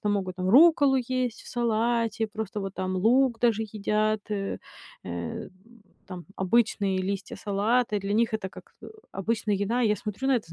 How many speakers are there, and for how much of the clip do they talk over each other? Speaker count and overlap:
one, no overlap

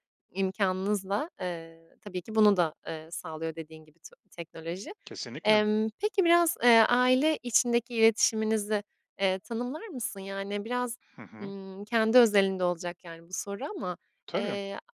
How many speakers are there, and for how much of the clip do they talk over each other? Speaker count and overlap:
two, about 3%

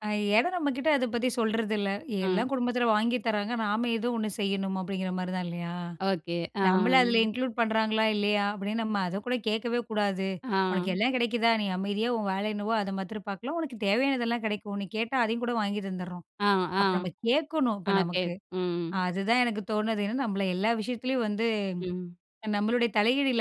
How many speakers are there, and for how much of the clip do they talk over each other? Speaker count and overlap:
two, about 5%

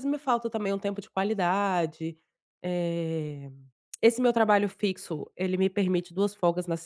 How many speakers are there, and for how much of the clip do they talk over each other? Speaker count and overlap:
one, no overlap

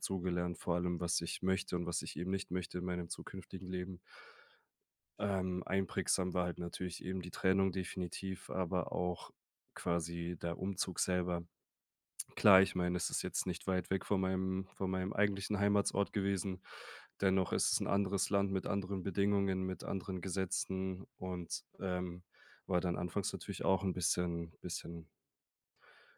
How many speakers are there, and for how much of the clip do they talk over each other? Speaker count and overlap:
one, no overlap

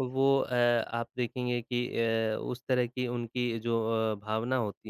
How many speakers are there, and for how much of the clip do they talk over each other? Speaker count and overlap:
one, no overlap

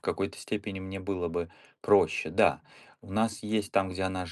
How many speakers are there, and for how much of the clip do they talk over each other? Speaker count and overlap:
one, no overlap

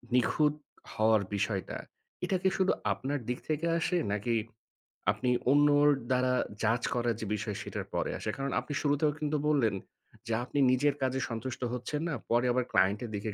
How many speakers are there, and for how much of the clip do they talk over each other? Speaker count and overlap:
one, no overlap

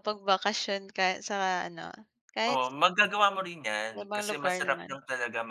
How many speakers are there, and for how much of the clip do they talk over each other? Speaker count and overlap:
two, about 19%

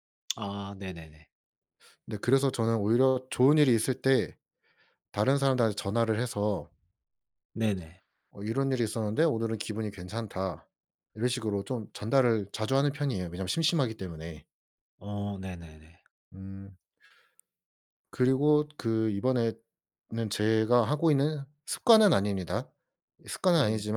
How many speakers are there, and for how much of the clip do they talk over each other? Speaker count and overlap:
two, about 1%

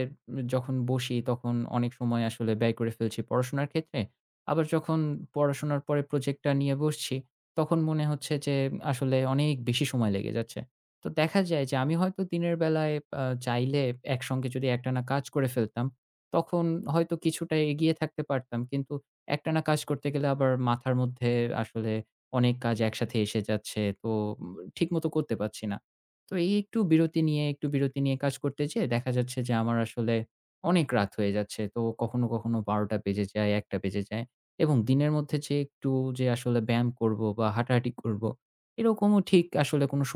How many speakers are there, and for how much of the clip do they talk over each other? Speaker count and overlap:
one, no overlap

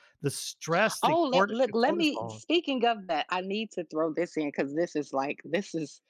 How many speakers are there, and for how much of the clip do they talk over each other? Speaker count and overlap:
two, about 22%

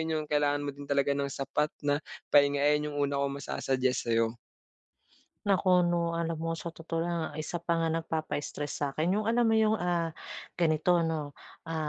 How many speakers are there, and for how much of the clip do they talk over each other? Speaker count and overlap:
two, no overlap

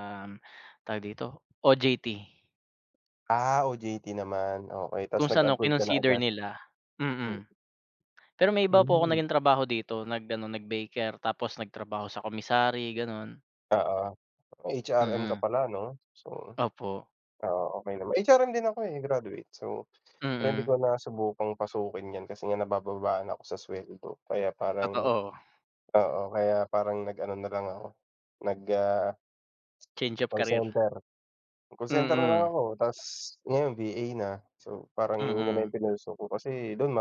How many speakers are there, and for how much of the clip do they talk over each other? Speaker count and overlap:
two, about 11%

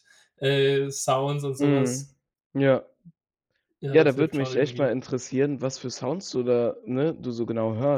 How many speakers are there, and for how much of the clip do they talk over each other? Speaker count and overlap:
two, about 16%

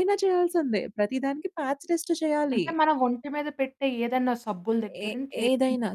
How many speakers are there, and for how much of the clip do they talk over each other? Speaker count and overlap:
two, about 18%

